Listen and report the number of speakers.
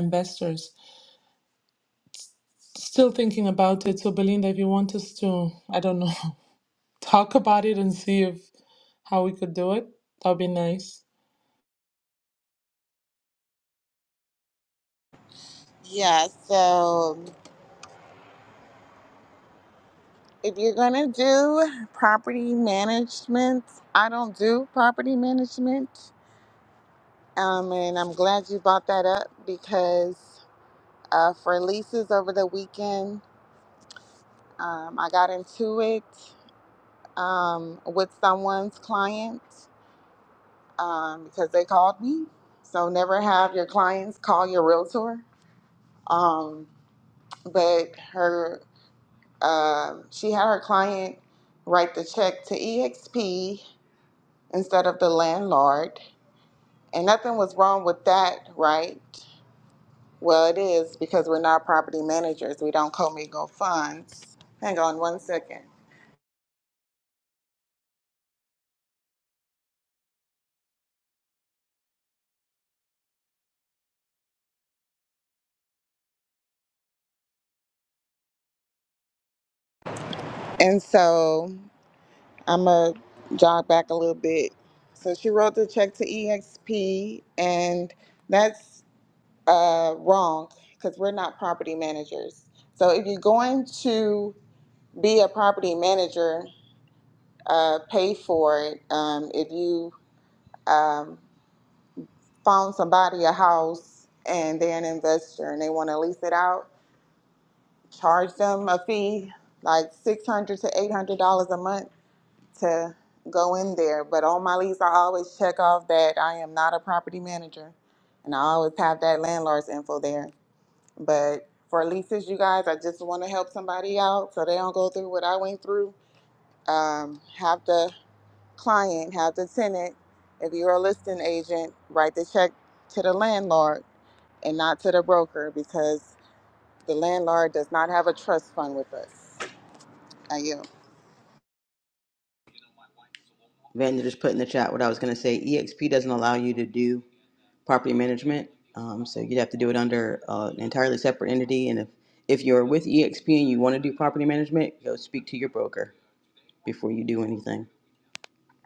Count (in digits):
3